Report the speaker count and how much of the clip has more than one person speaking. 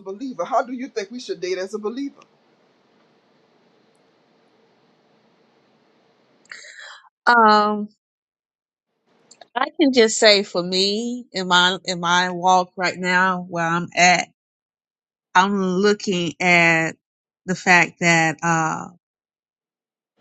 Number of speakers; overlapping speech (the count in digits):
2, no overlap